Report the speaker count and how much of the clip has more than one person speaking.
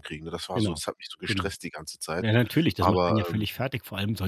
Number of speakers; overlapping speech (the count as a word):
two, about 28%